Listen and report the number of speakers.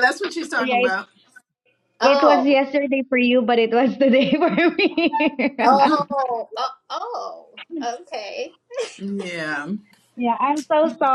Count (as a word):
three